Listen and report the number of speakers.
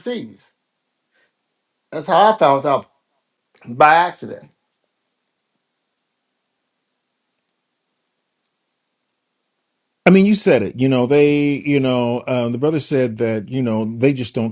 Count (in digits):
2